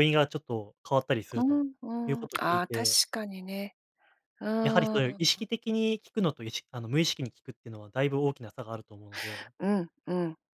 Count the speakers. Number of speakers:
2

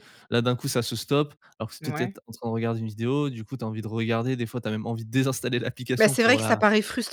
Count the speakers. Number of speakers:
2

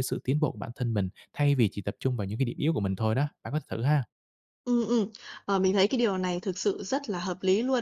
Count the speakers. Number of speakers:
2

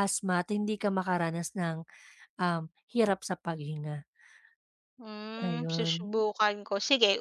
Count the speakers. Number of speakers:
2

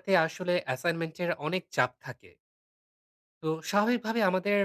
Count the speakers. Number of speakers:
1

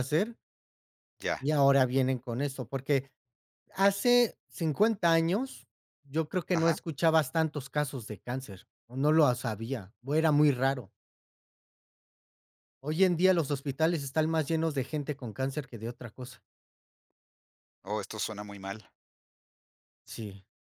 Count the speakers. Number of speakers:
2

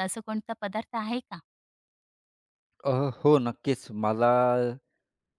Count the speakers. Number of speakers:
2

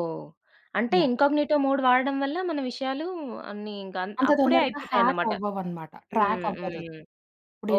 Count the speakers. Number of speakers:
2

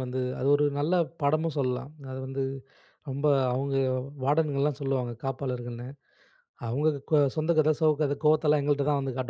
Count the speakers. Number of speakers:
1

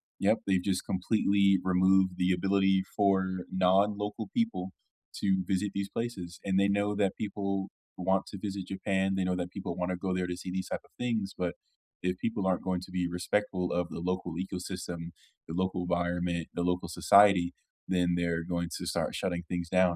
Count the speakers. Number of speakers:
1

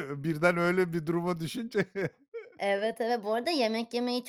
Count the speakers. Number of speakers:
2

